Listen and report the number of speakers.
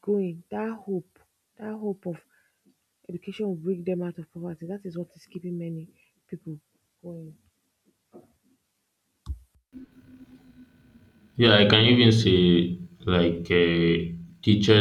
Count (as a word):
two